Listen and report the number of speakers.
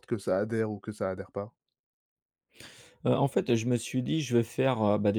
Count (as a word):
two